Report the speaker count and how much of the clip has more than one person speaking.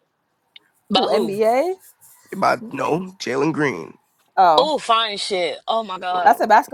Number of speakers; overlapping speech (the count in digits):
3, about 11%